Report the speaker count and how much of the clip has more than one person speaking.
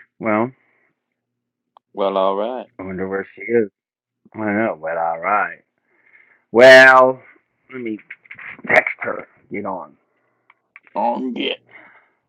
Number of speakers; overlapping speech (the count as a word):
two, no overlap